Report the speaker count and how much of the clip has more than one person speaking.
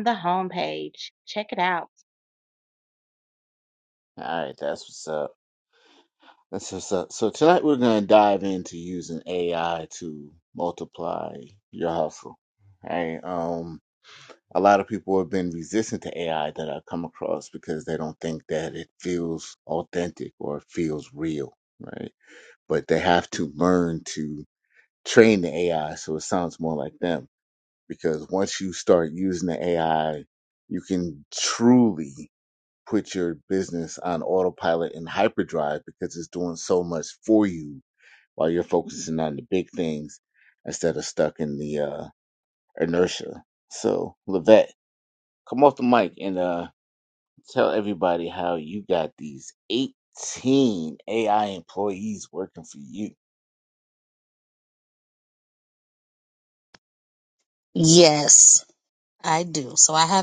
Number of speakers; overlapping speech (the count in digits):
3, no overlap